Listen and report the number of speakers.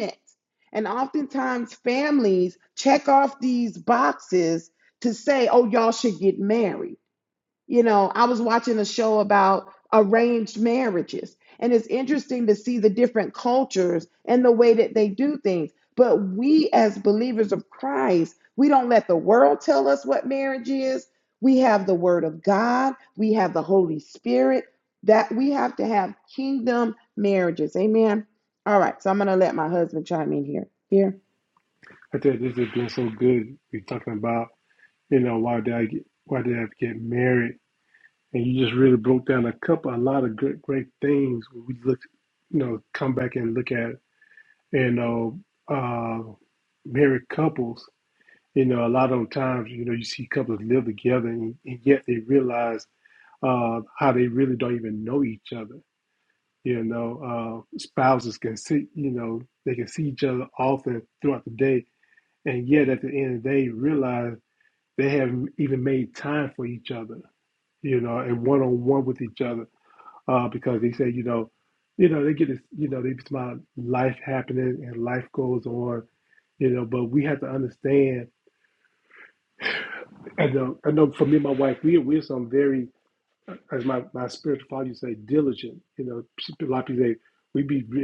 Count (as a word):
two